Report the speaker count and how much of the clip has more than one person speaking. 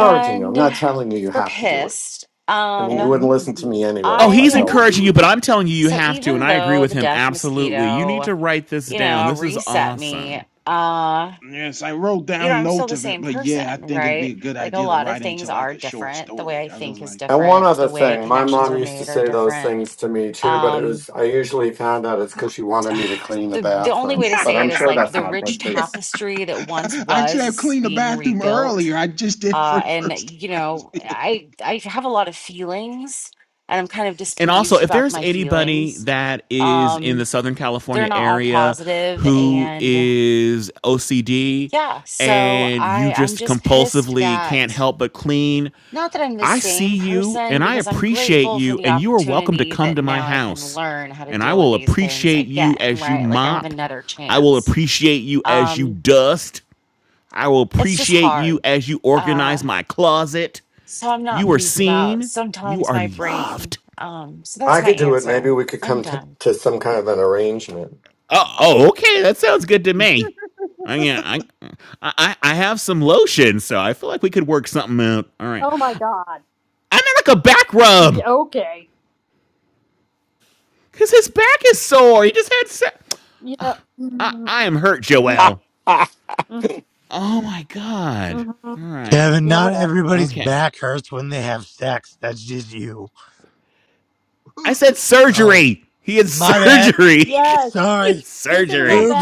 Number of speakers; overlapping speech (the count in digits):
6, about 43%